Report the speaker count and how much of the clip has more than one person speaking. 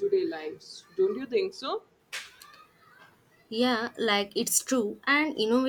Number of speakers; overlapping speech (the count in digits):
2, no overlap